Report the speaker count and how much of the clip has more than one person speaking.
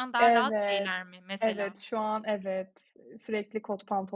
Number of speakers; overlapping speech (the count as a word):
two, about 25%